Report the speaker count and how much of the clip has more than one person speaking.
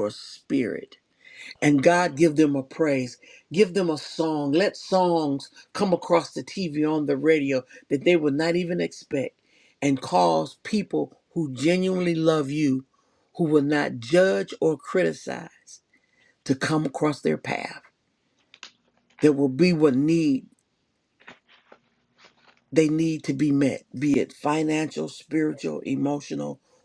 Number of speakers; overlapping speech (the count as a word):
one, no overlap